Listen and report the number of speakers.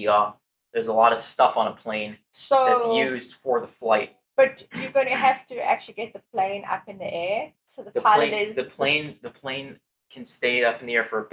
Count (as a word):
two